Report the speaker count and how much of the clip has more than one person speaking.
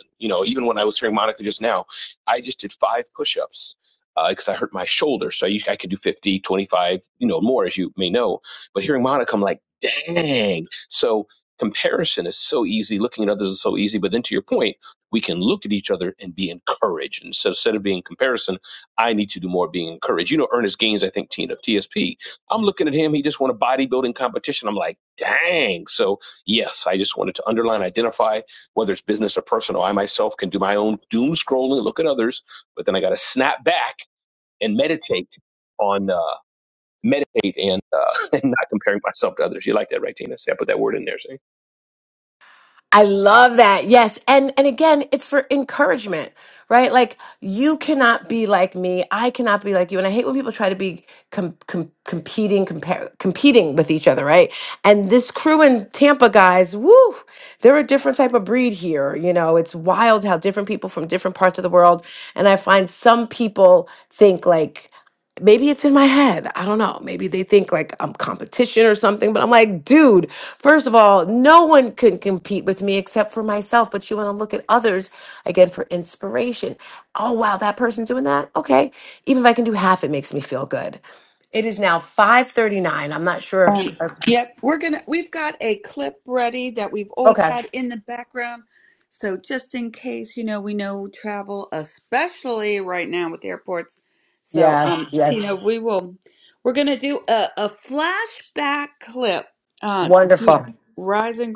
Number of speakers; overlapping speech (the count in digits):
3, about 2%